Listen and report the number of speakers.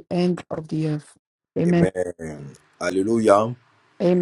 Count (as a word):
two